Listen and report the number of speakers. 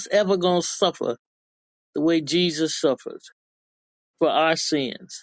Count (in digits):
1